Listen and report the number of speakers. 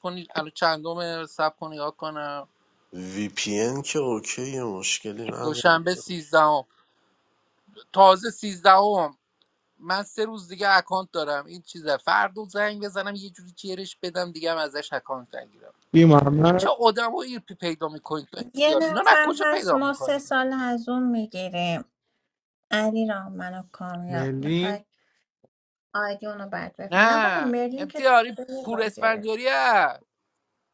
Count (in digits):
4